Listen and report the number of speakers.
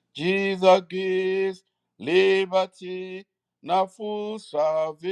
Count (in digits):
1